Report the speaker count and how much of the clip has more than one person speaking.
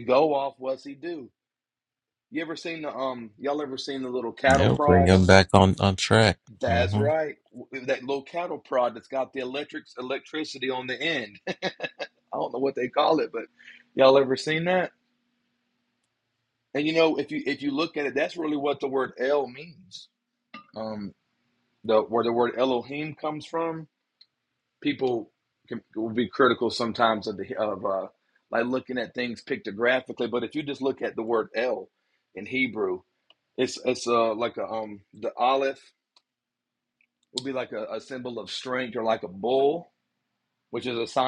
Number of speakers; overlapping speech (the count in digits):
2, about 3%